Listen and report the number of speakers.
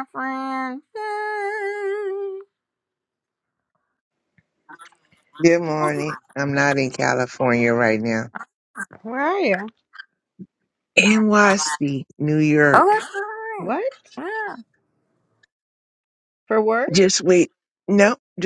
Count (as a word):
three